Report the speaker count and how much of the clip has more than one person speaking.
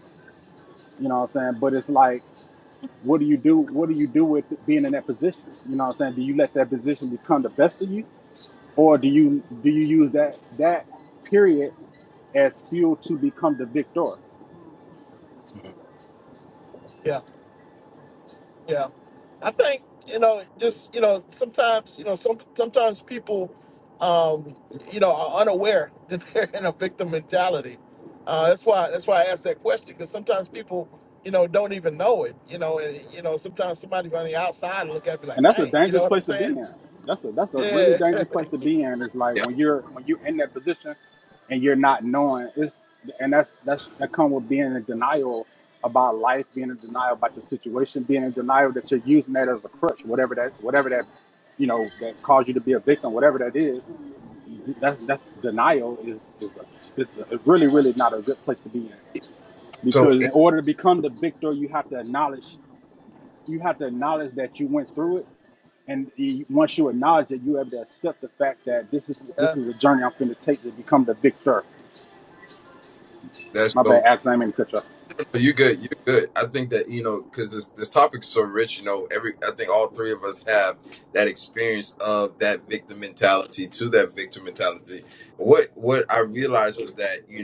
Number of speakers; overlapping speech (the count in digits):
3, about 3%